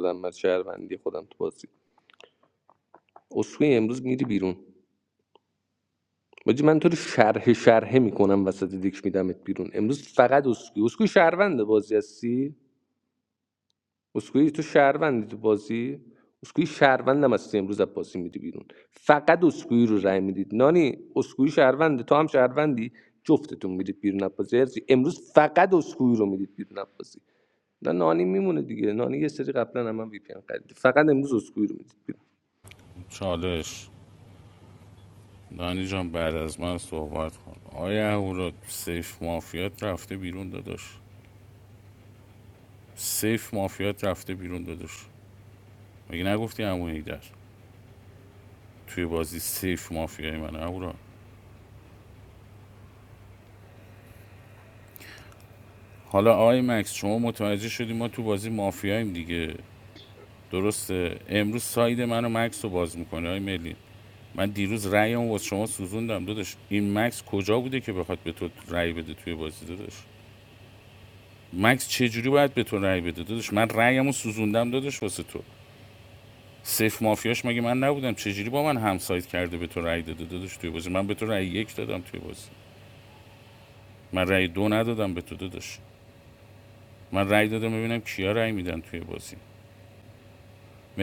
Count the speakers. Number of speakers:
2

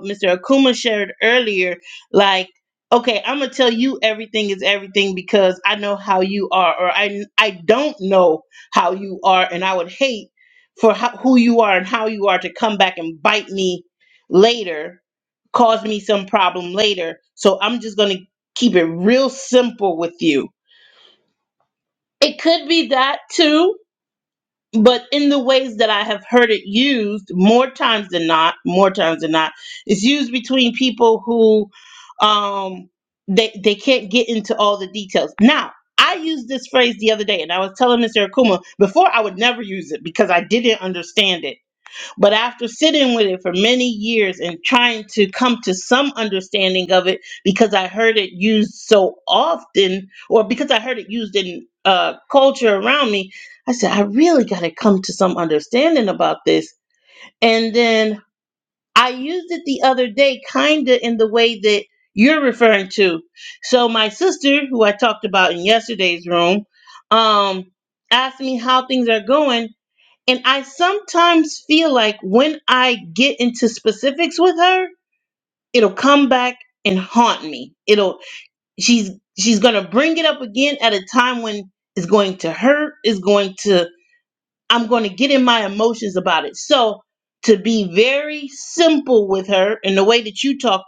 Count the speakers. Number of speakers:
1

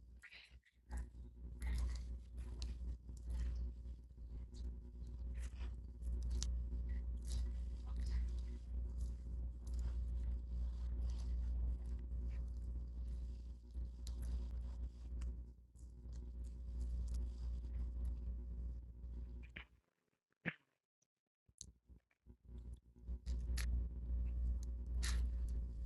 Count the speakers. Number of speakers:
0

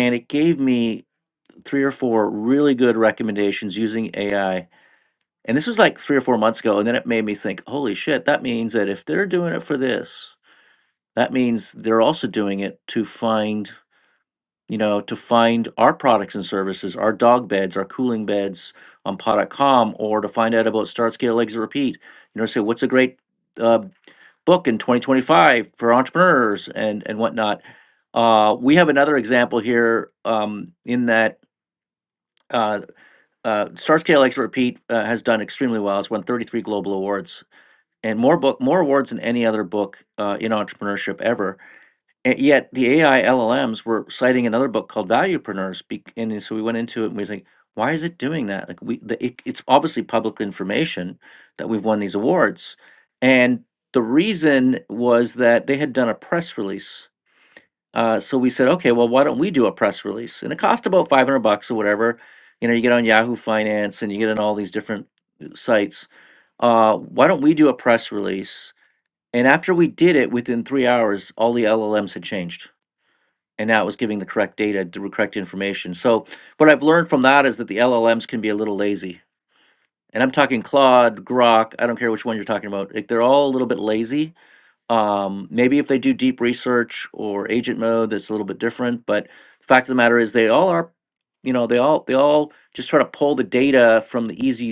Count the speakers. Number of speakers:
1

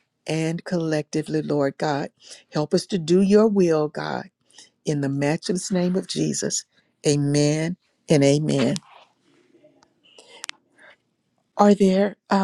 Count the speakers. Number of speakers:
1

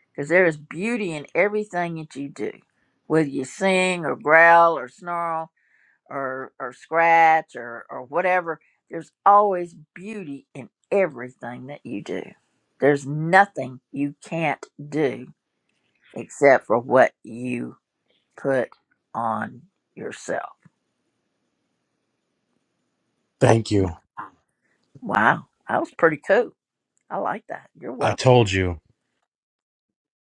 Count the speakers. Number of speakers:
2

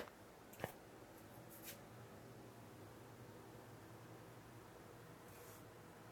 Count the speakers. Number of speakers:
0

